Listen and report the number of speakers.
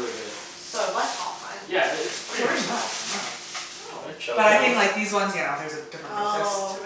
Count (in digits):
3